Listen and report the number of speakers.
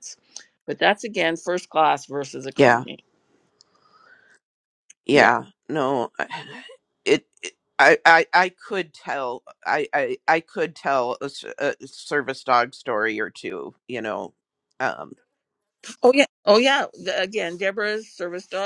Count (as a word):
two